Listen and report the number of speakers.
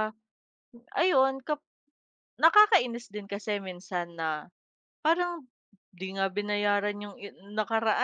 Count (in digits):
1